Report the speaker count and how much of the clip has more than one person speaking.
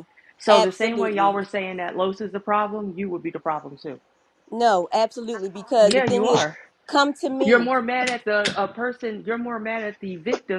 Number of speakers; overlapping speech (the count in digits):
2, about 16%